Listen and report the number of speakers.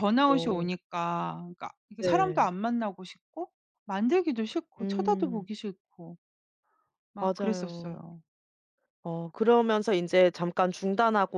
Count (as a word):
two